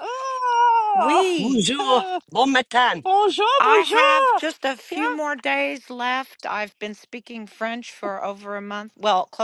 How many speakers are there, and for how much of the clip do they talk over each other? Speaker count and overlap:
3, about 20%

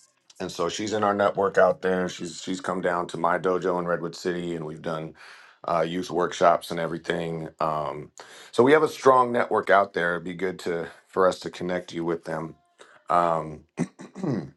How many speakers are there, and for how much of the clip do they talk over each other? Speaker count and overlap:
1, no overlap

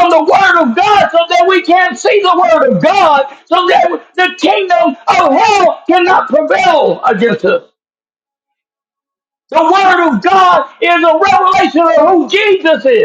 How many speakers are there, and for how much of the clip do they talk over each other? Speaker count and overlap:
1, no overlap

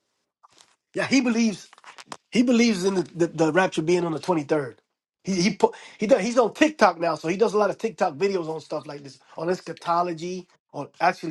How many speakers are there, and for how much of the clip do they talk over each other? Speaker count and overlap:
1, no overlap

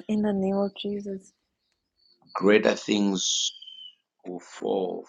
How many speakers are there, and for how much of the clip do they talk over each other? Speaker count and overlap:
2, no overlap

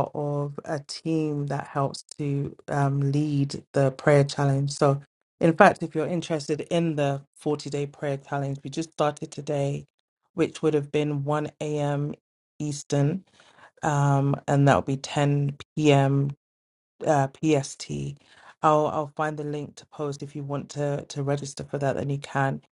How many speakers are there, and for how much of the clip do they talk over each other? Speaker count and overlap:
1, no overlap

